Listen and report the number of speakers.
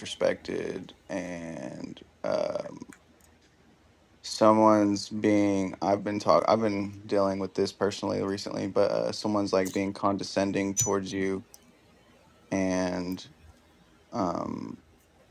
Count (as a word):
one